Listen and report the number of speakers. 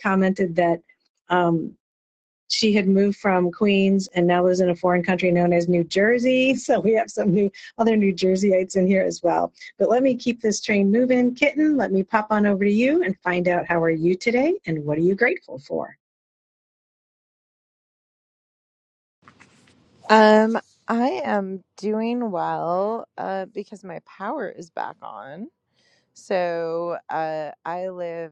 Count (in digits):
2